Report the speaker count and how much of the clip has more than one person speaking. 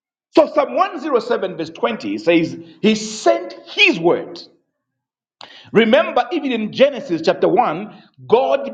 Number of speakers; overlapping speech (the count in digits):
1, no overlap